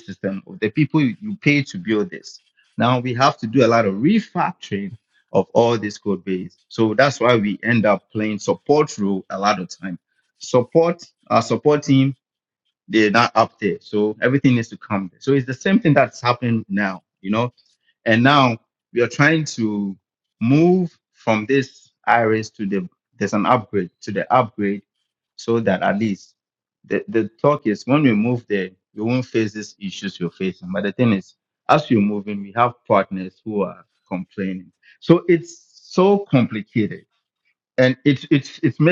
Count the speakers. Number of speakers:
1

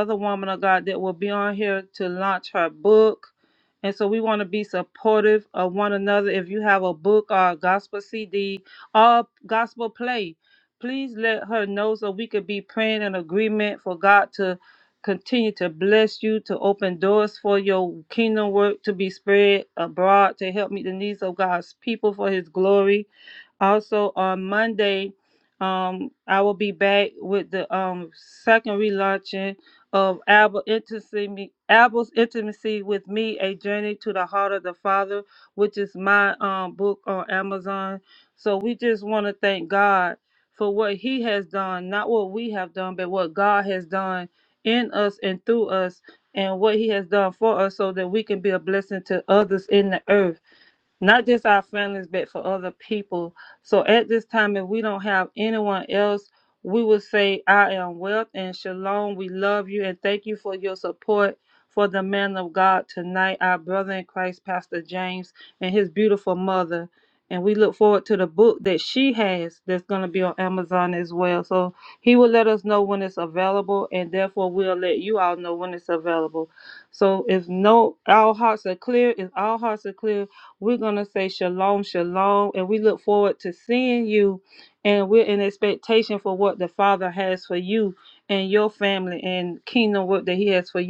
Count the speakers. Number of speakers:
1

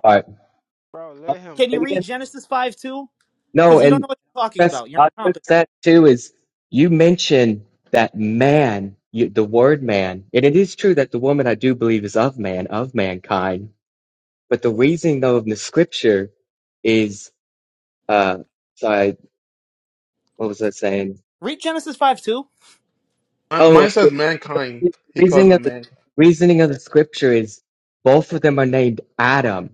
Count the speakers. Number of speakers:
4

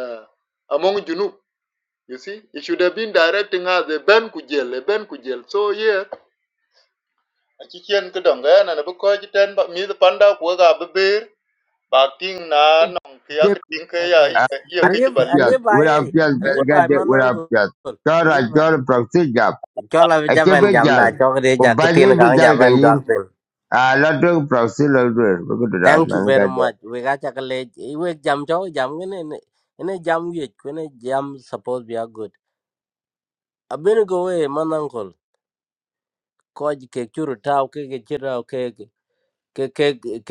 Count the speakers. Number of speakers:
3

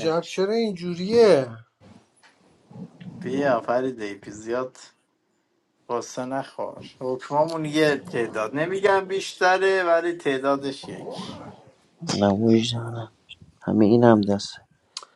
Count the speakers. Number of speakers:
3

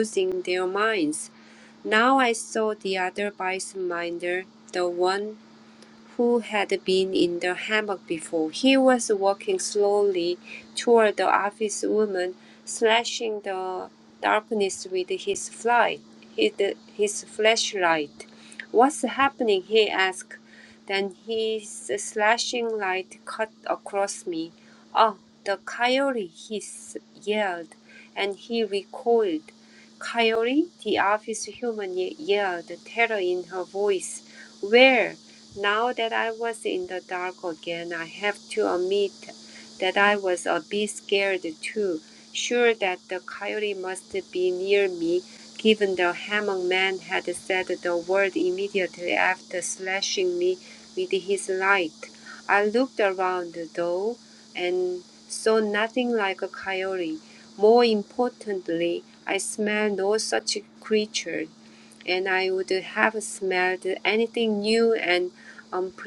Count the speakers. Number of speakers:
1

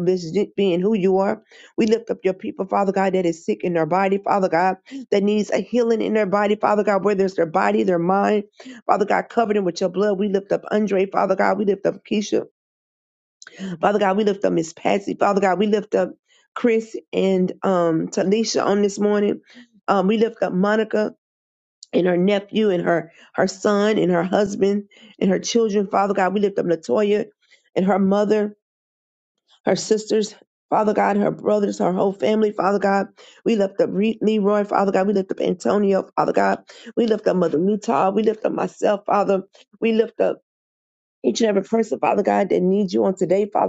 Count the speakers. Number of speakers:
1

